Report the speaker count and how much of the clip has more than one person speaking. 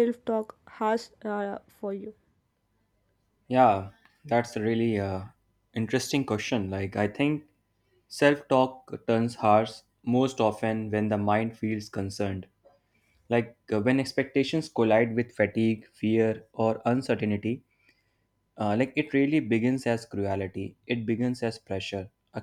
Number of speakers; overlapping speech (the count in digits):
2, no overlap